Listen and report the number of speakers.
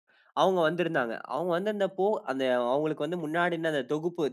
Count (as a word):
one